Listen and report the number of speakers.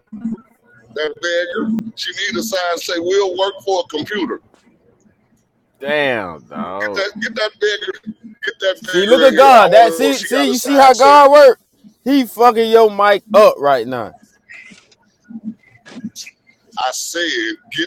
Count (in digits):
2